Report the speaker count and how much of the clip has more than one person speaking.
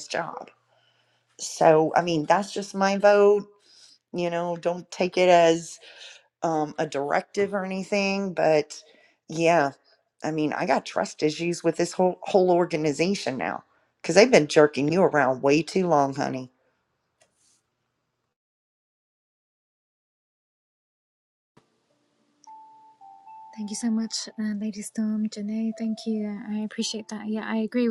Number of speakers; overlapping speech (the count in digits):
2, no overlap